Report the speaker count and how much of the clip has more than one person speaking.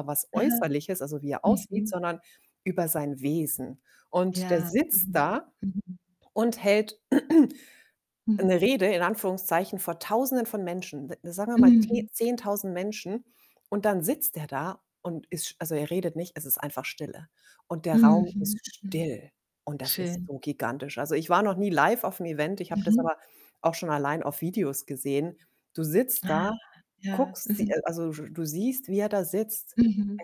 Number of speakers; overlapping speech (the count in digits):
2, about 16%